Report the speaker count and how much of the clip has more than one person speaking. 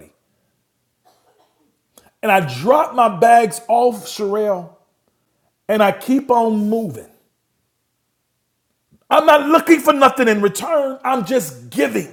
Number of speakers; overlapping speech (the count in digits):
1, no overlap